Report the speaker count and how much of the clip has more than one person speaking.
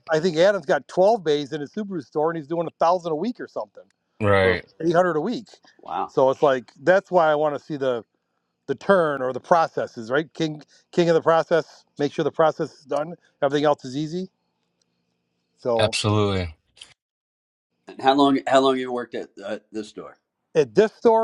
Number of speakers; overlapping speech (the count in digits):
3, about 1%